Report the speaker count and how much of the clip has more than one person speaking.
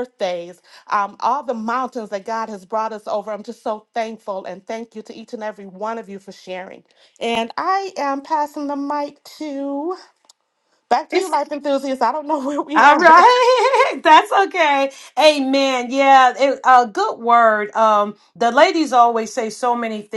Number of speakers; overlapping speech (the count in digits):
2, about 2%